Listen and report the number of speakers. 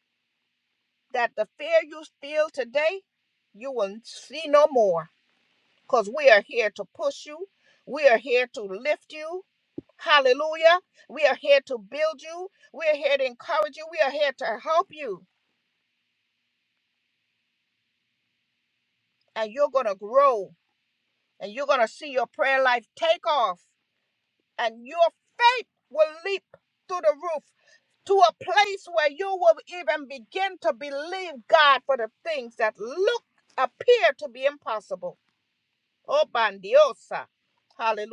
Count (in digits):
1